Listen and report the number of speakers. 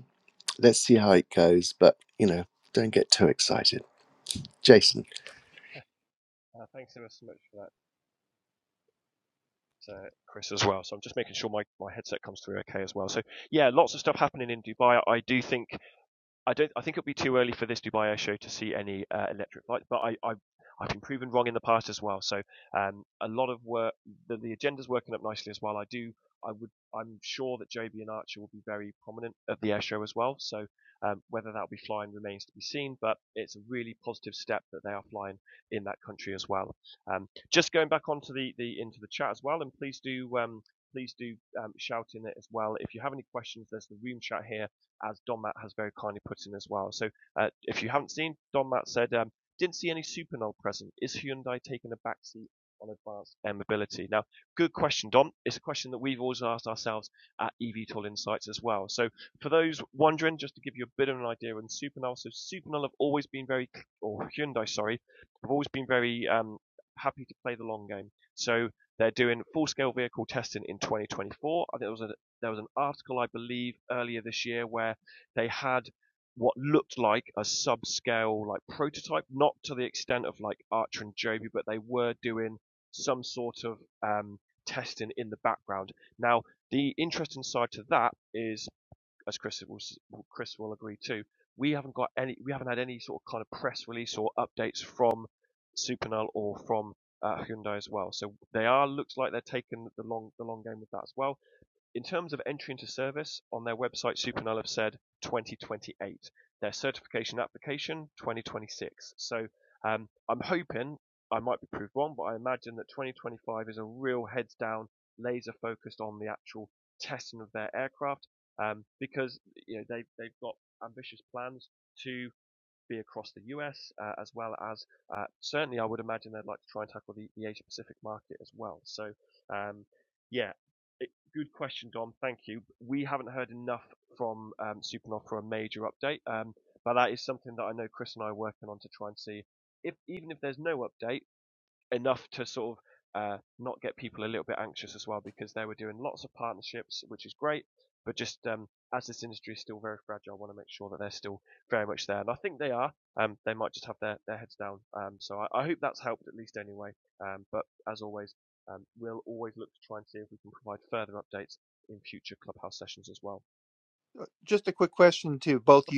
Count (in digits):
3